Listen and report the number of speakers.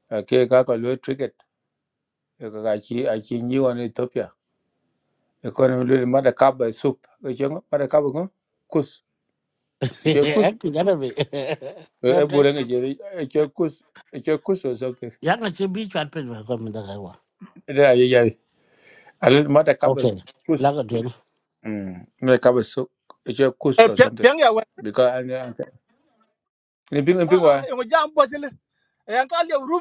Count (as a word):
three